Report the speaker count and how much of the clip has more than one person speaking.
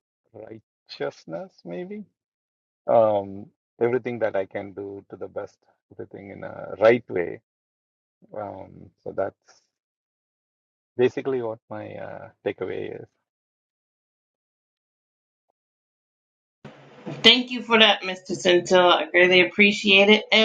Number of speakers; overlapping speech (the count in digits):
2, no overlap